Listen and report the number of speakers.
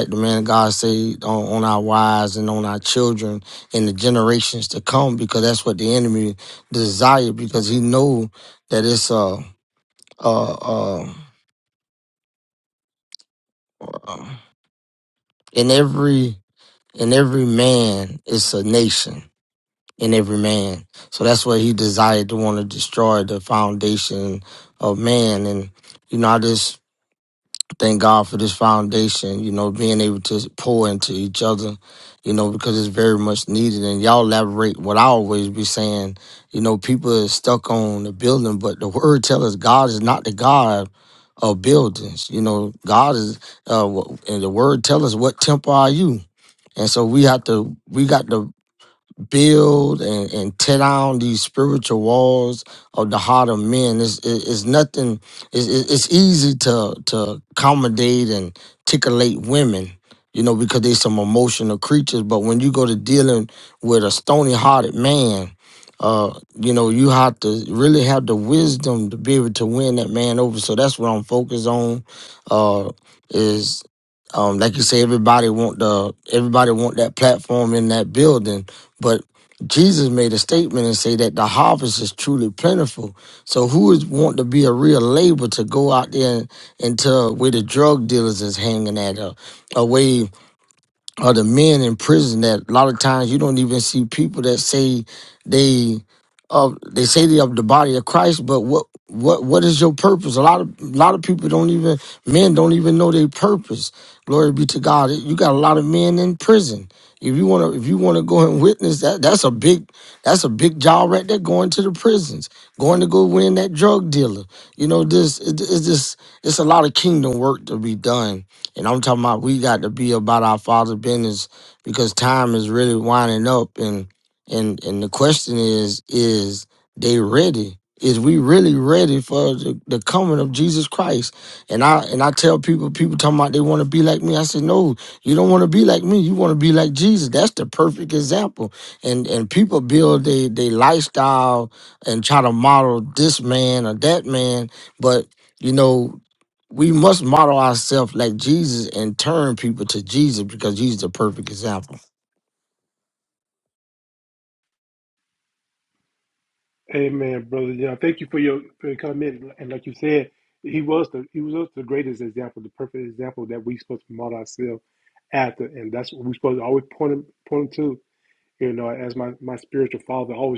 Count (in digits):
2